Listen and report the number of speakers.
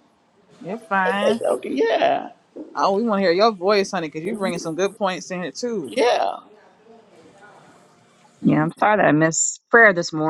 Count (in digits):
3